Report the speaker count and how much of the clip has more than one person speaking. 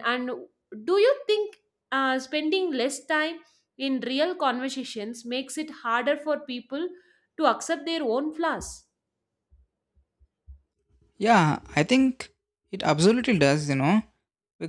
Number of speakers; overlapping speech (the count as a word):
two, no overlap